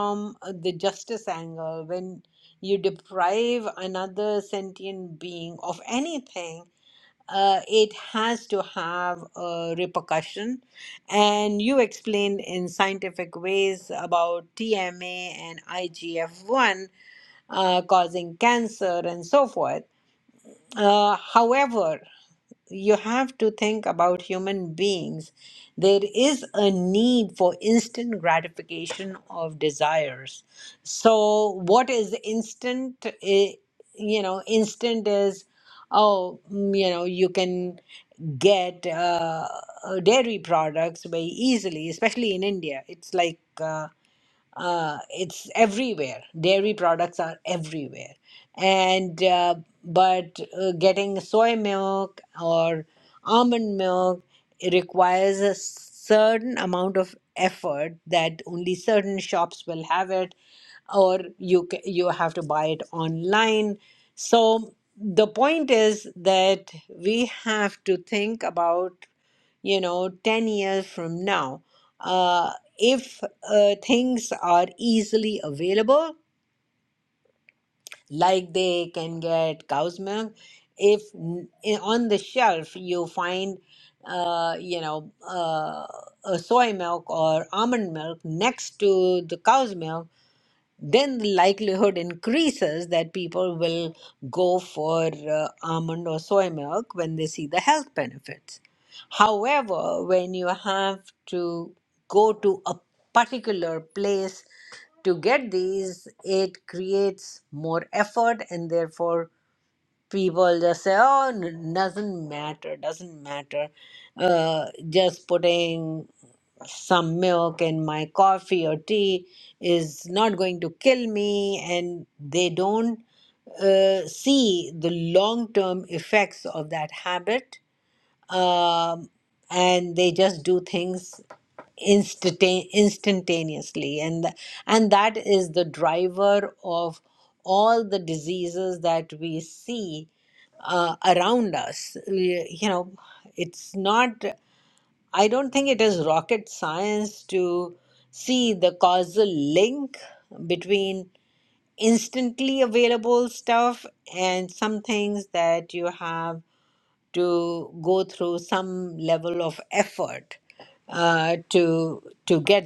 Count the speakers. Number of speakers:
1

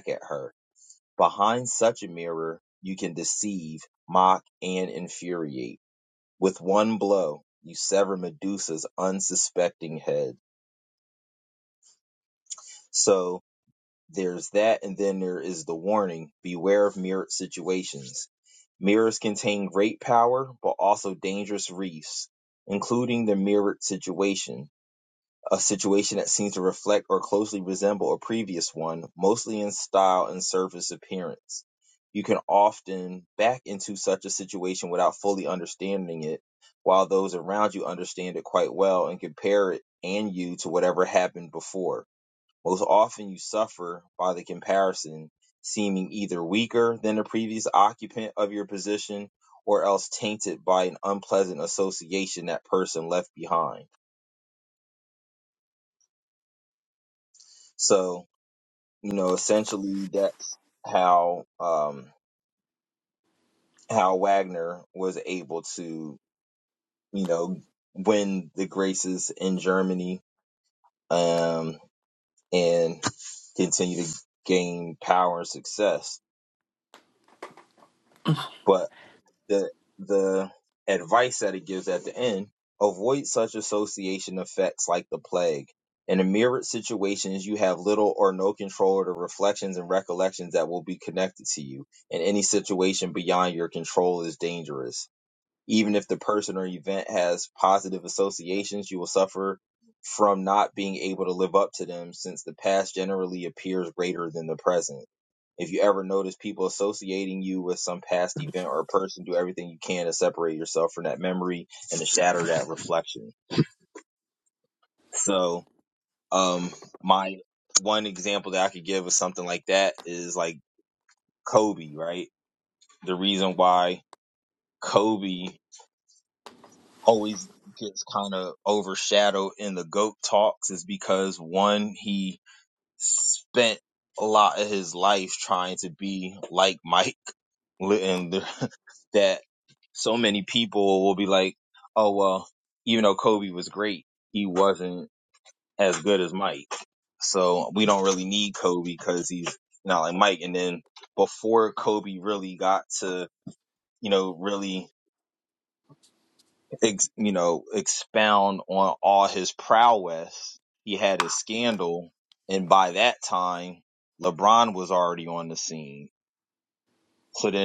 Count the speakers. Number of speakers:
1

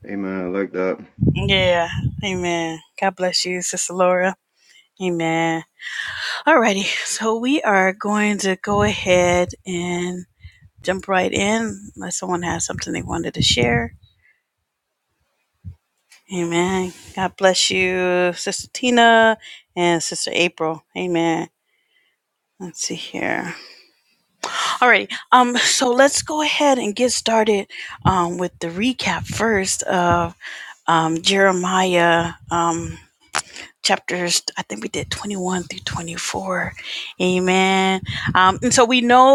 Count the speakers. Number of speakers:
2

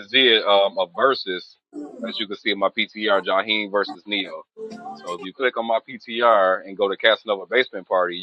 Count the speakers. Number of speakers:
1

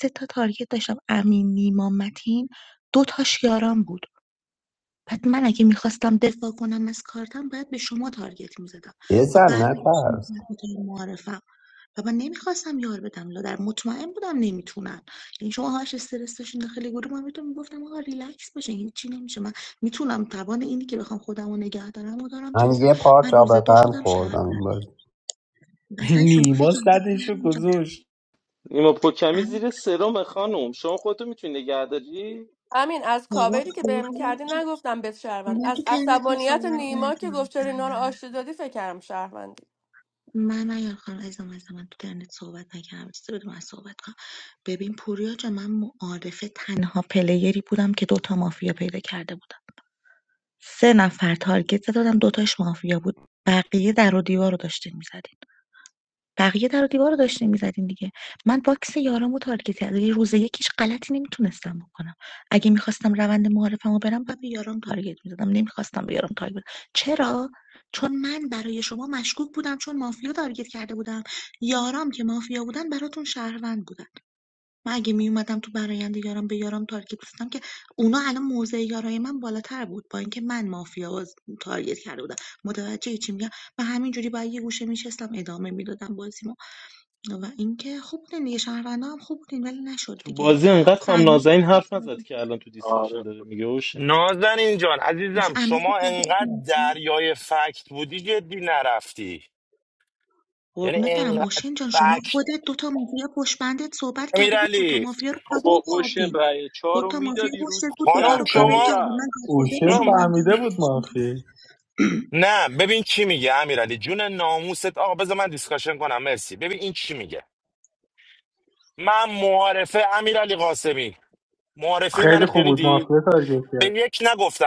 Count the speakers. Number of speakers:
7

